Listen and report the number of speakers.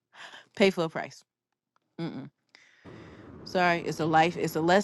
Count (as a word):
one